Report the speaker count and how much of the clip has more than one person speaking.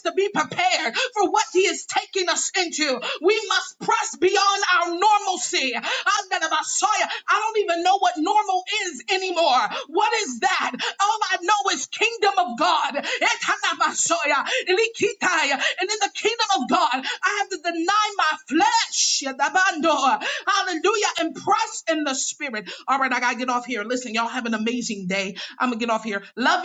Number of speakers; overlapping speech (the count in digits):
1, no overlap